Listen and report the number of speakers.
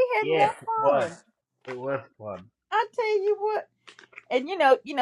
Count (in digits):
2